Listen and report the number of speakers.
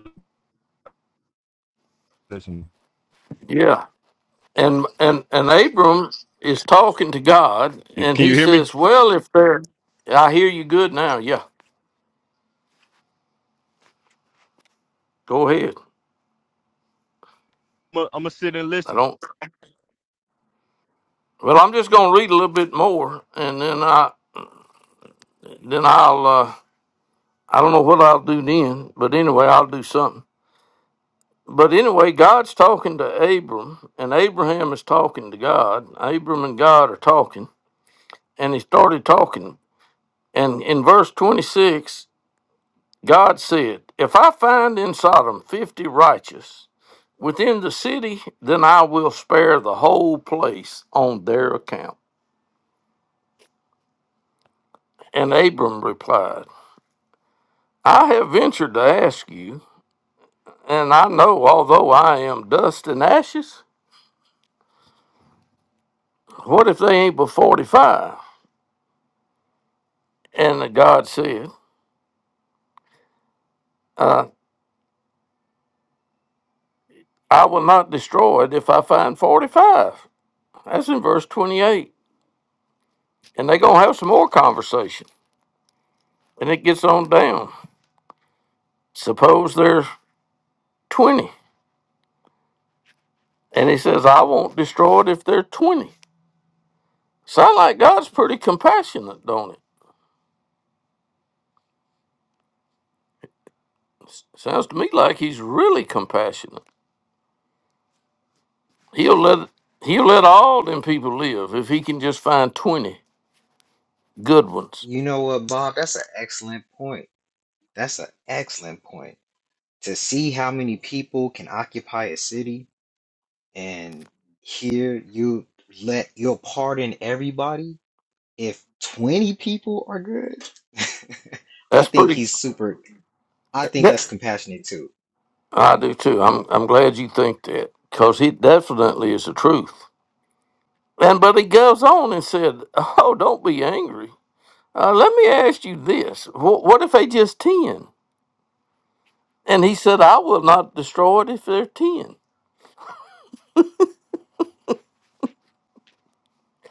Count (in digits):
3